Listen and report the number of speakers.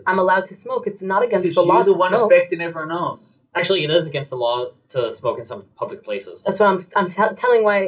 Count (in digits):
3